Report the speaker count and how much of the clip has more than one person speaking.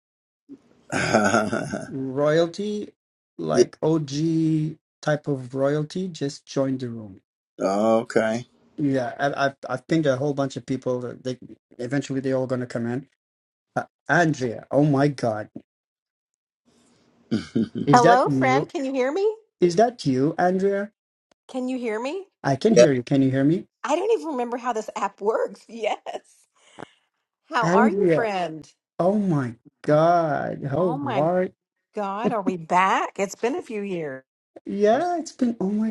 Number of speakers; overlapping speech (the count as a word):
three, about 6%